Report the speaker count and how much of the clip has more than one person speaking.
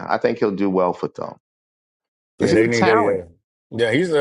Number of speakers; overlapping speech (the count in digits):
2, about 19%